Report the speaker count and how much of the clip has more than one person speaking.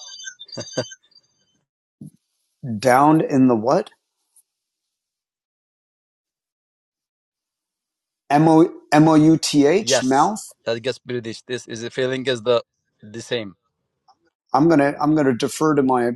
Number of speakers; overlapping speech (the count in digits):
2, about 1%